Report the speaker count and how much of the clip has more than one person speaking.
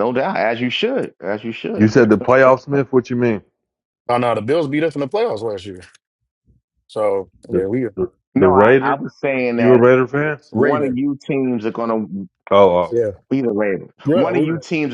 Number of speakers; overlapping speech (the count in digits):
3, about 14%